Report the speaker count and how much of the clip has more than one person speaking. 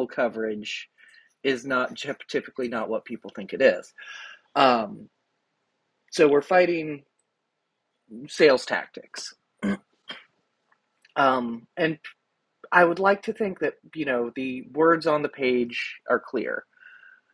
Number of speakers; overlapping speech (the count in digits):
1, no overlap